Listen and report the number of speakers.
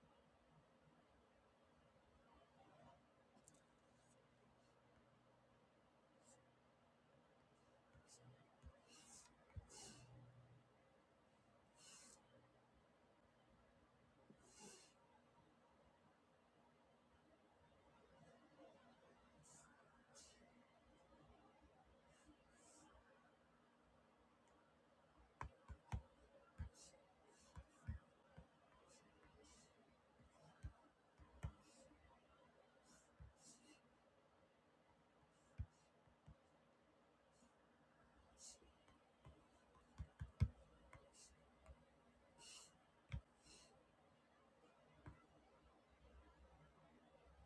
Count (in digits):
0